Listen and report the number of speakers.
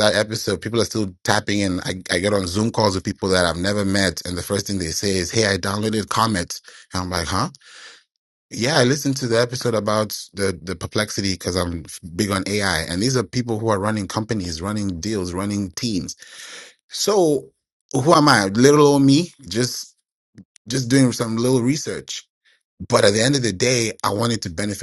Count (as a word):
one